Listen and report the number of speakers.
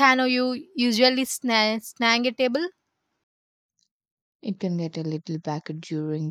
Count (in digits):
2